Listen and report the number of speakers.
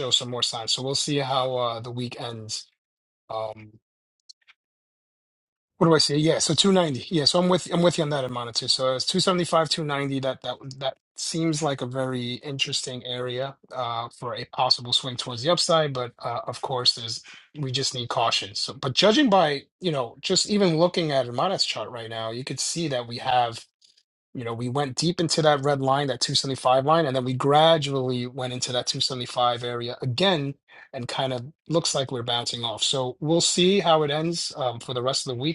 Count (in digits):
1